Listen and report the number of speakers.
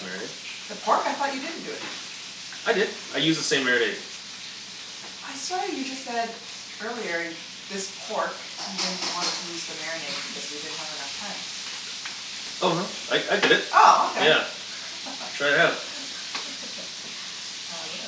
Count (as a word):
two